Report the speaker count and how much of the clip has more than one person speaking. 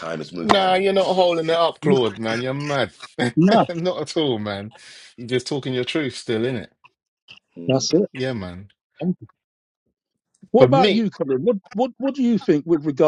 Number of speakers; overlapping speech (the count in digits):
3, about 10%